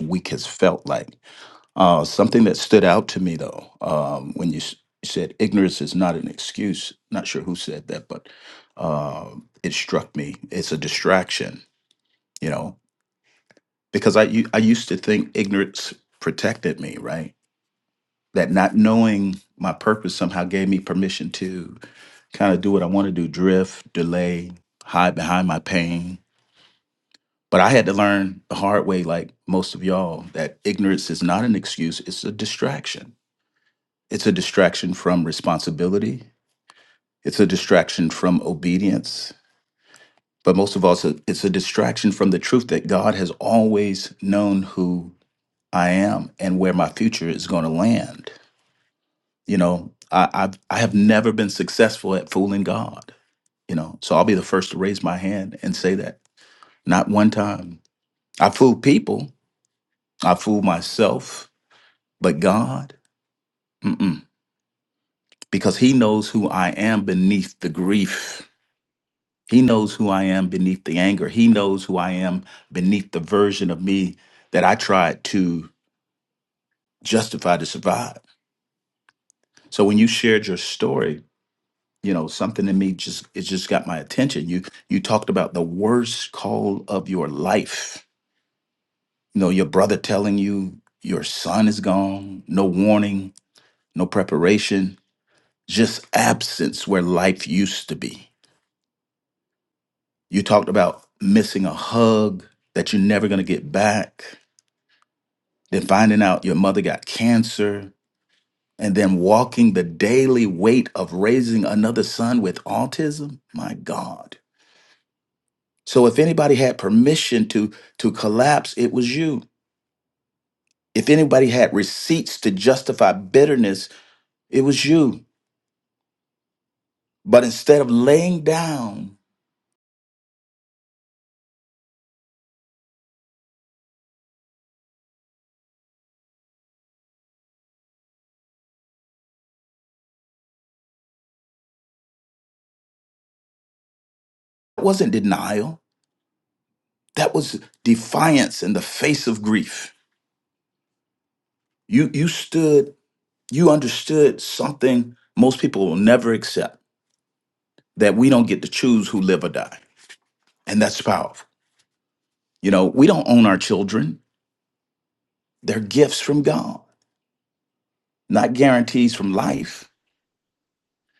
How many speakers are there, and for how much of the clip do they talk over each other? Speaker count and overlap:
1, no overlap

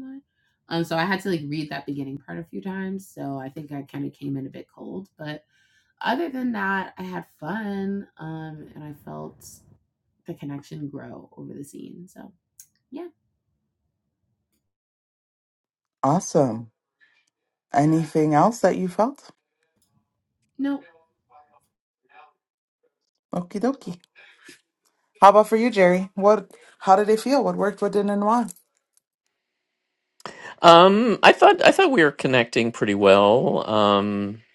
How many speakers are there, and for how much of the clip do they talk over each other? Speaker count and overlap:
3, no overlap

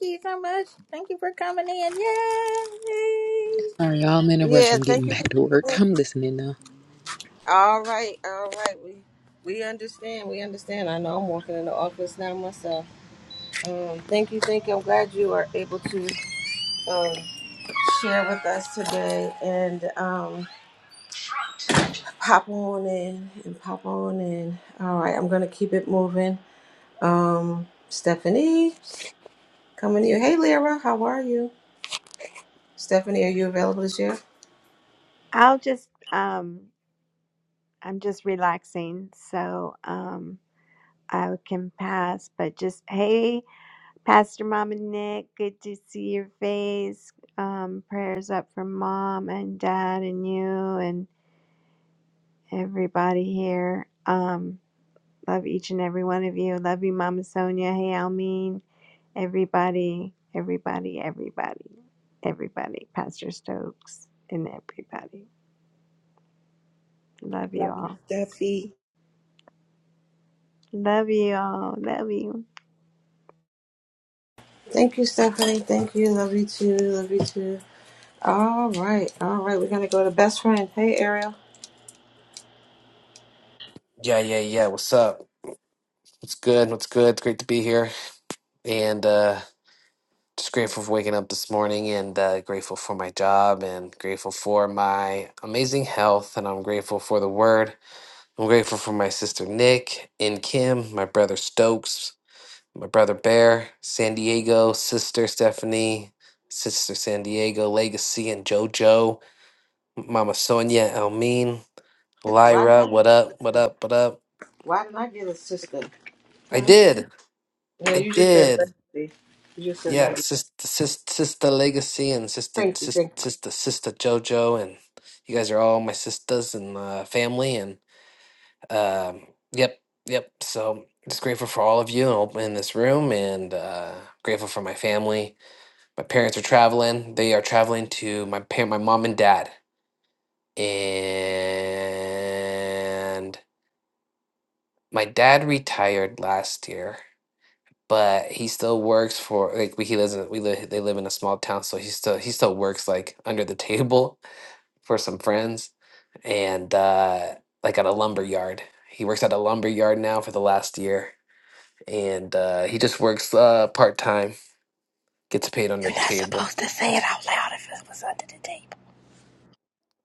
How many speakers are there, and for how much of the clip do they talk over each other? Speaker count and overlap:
6, about 3%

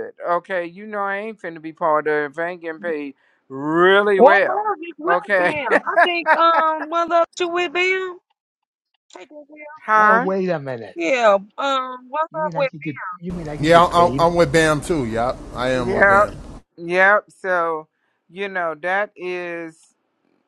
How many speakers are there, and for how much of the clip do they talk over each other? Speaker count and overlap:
4, about 14%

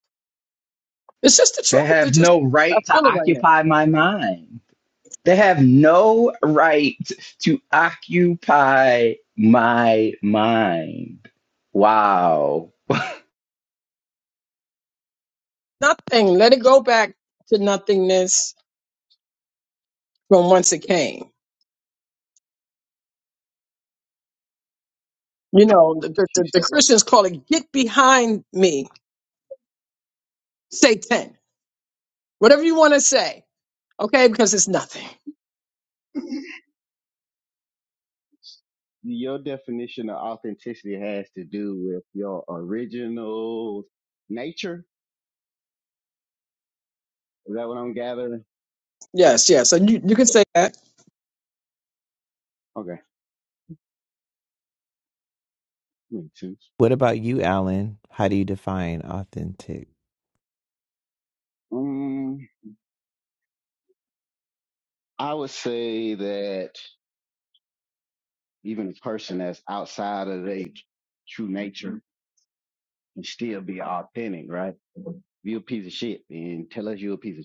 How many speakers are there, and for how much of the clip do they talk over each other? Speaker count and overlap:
4, about 3%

